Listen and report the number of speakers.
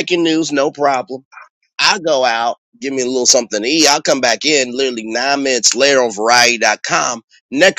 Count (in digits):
1